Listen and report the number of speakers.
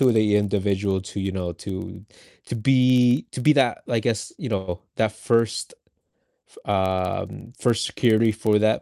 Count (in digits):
1